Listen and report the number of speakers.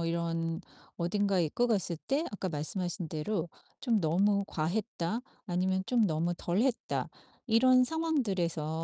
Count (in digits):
1